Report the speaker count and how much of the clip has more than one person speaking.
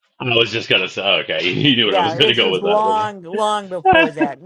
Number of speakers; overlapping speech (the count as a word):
two, about 26%